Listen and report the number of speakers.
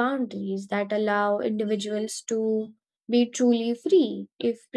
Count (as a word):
one